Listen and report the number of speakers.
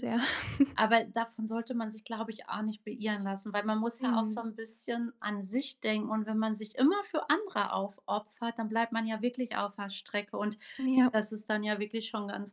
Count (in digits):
2